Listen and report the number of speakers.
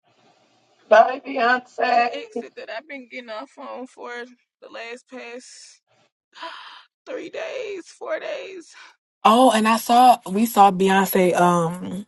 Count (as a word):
three